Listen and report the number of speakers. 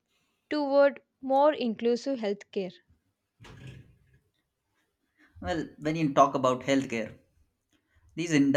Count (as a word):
two